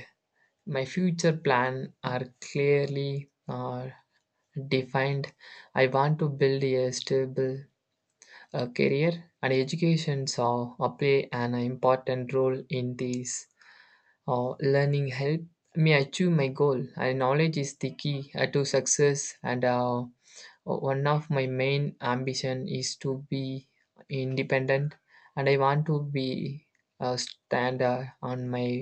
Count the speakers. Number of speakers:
1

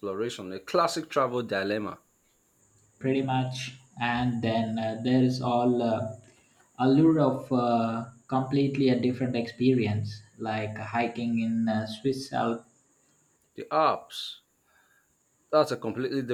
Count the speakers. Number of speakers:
2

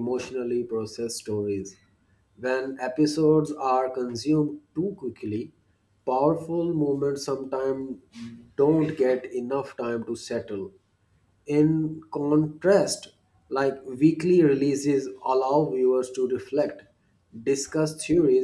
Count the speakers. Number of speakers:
1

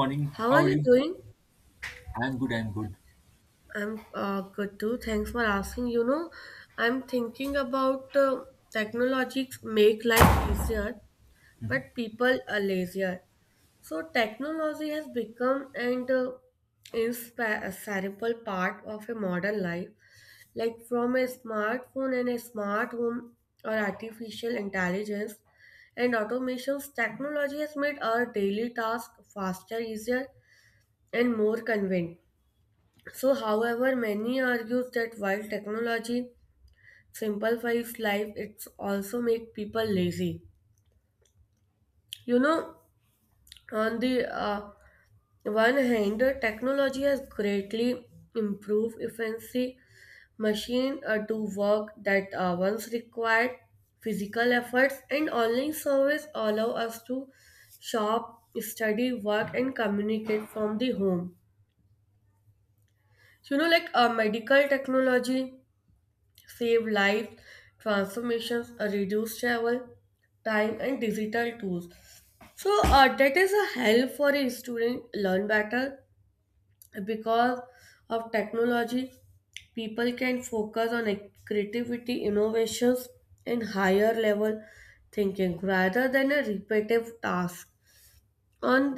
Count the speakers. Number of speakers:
2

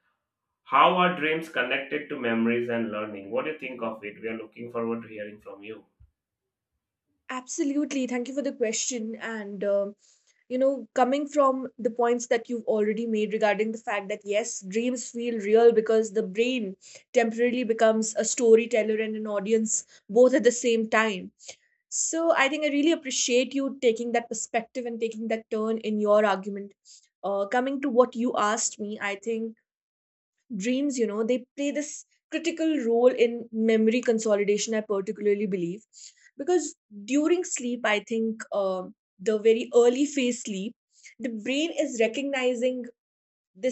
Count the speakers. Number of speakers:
2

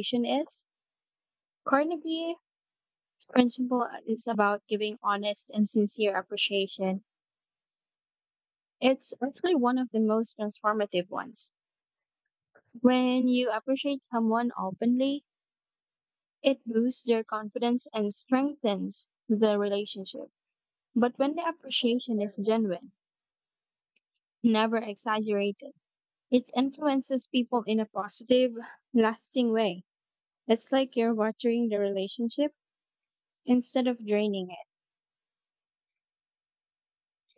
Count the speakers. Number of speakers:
1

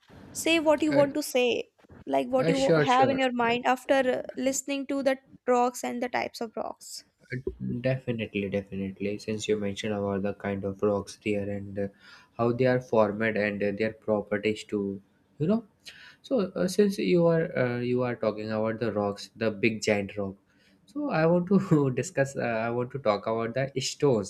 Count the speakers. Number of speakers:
2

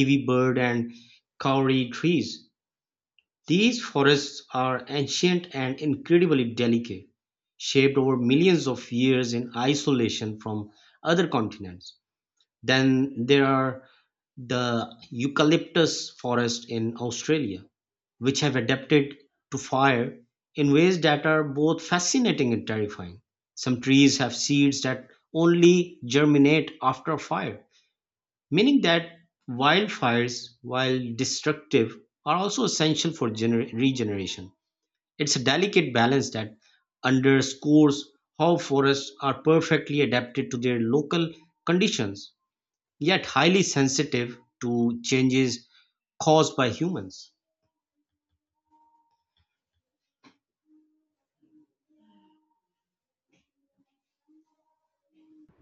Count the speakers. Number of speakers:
1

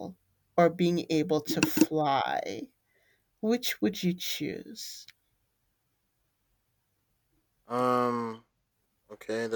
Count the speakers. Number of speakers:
2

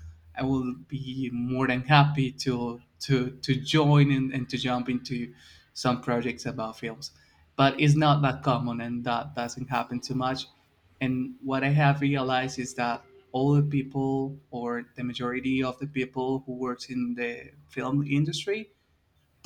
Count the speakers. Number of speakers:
1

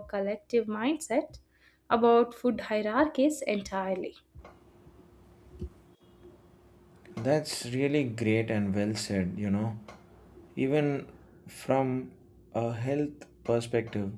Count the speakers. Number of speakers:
2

